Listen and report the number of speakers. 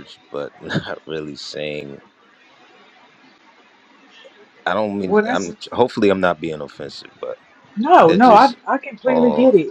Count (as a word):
two